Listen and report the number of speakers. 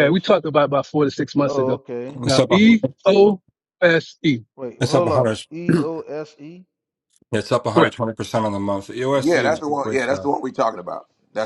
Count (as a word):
four